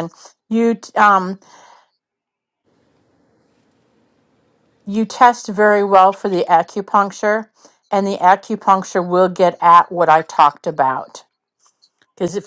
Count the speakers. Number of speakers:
one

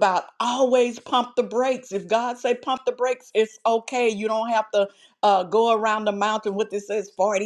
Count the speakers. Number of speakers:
one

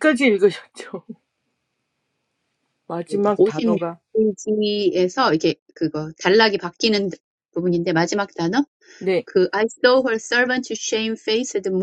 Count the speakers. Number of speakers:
two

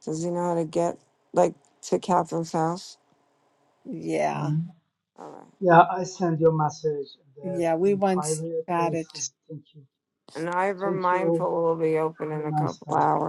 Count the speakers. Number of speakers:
three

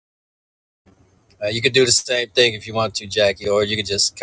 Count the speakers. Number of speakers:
one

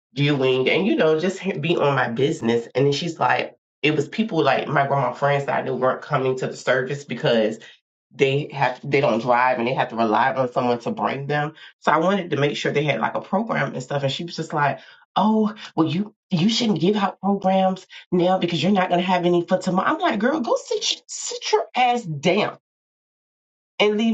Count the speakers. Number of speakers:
one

